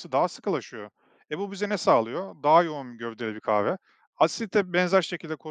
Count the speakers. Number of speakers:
1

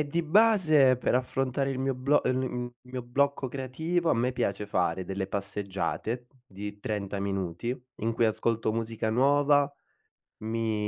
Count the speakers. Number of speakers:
1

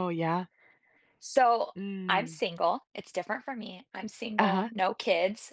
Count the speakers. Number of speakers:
2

